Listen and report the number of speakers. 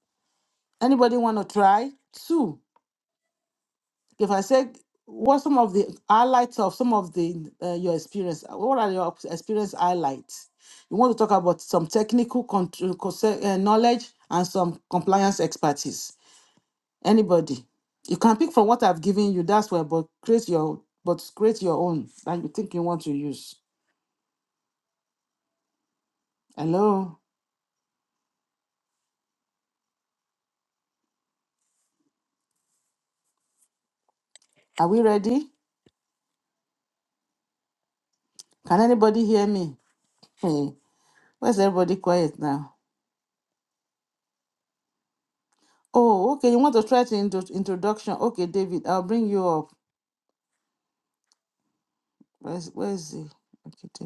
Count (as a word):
one